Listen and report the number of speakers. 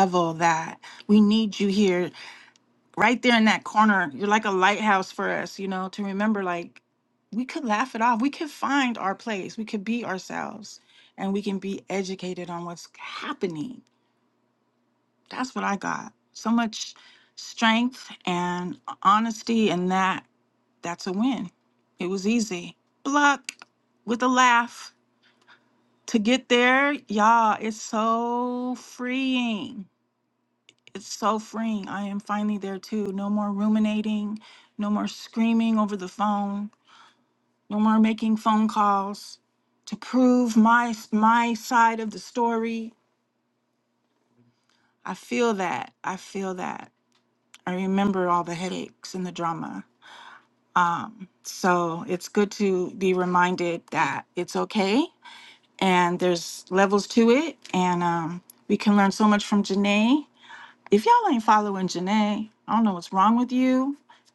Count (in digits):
1